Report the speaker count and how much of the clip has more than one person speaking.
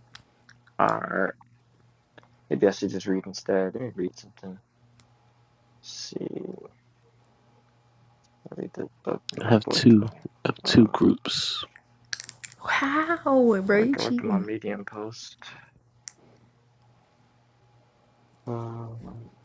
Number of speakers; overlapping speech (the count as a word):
three, about 8%